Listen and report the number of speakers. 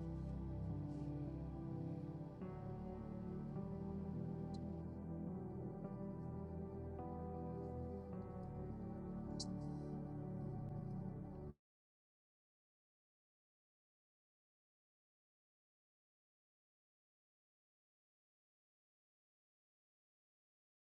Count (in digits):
0